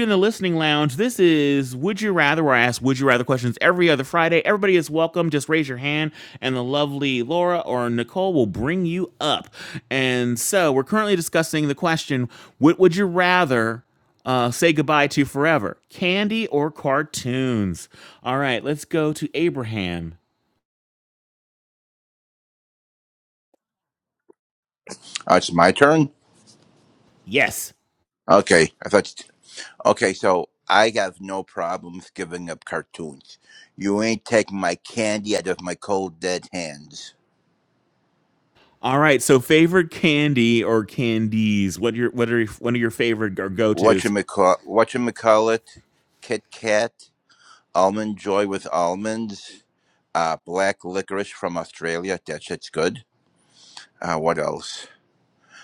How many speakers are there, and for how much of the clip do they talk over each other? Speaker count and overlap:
two, about 1%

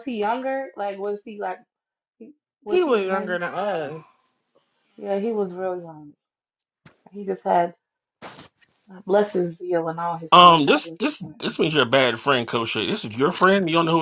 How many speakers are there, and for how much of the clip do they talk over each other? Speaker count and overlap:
three, about 12%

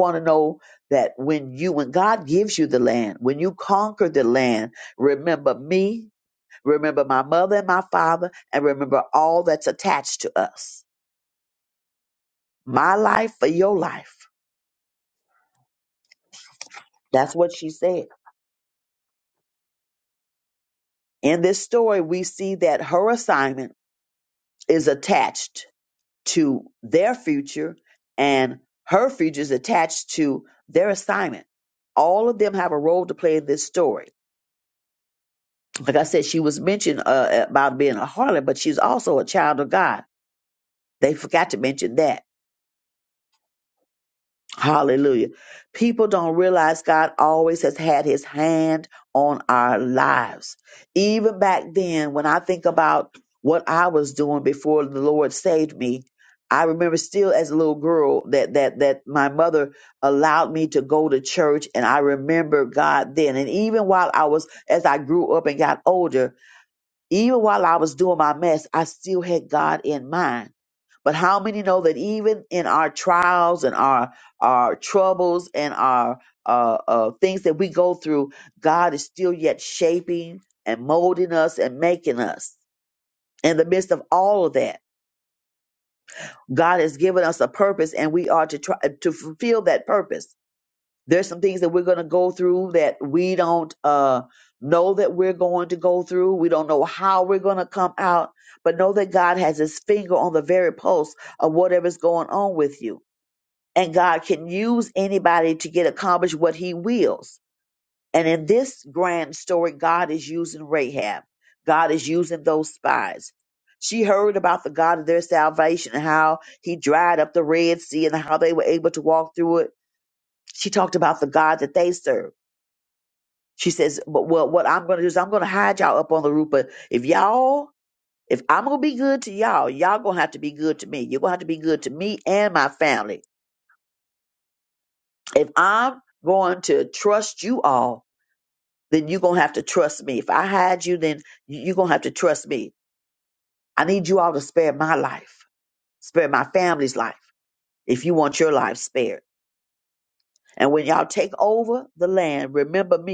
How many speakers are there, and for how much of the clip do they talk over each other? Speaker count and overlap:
one, no overlap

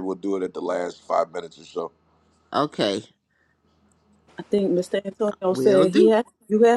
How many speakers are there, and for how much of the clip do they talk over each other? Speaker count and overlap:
three, about 9%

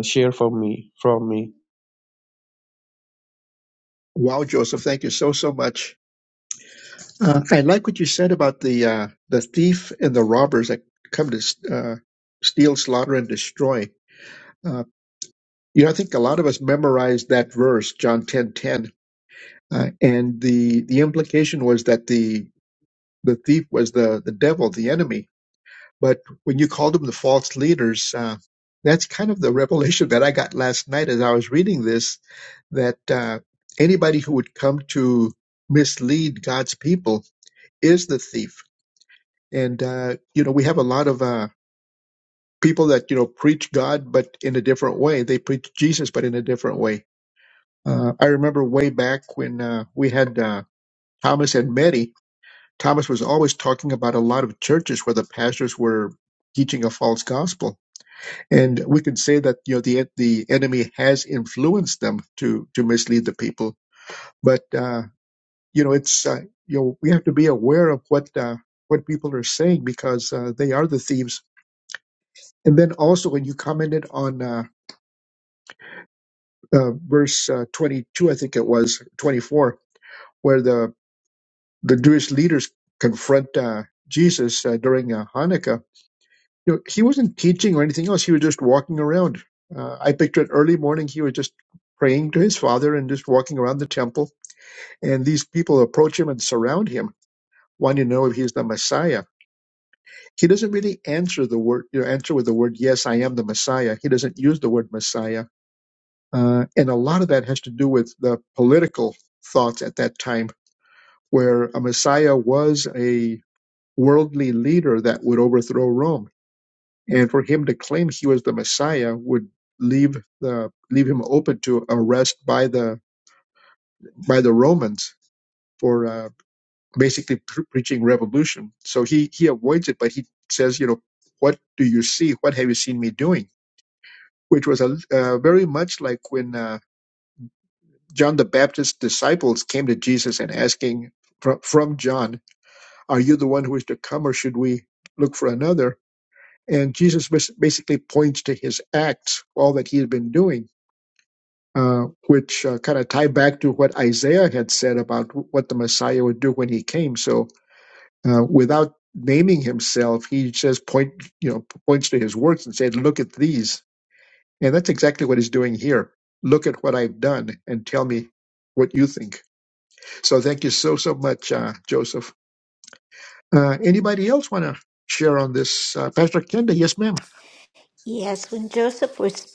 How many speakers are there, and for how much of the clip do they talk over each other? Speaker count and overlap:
three, no overlap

